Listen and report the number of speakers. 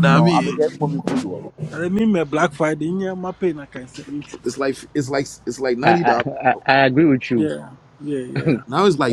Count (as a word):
four